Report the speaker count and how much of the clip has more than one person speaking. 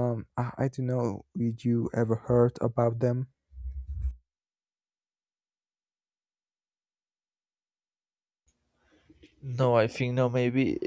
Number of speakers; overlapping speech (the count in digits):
2, no overlap